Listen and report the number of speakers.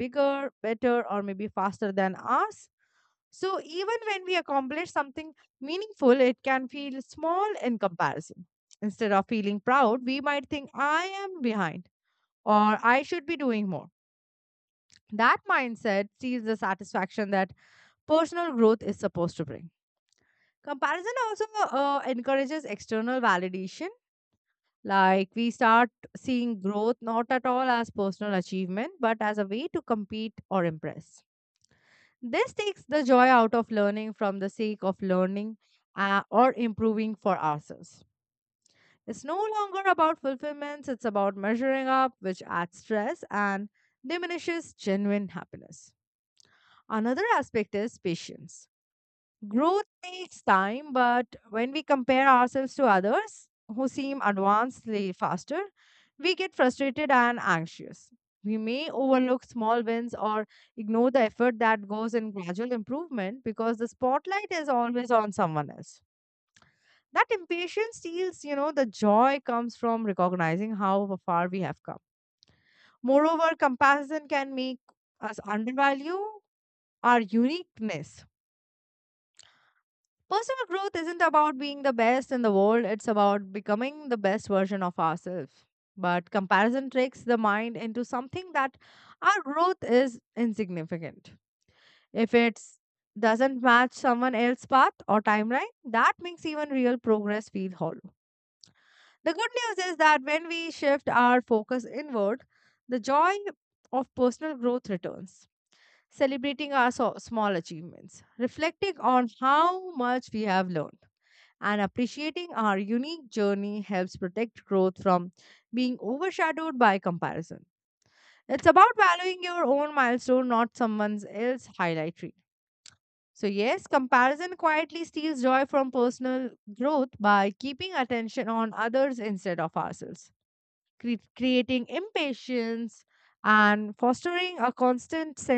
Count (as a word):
one